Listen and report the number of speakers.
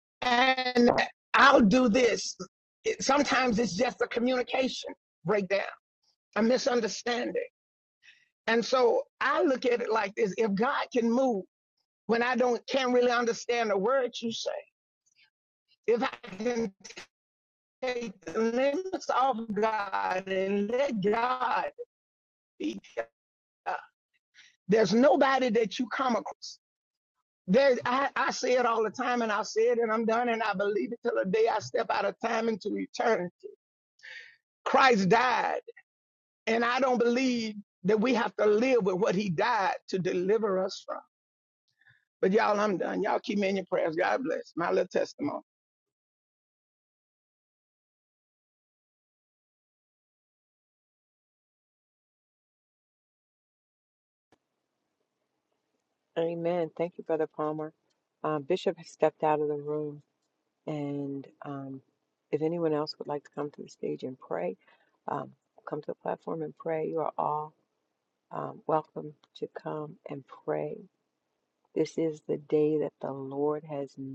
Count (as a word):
two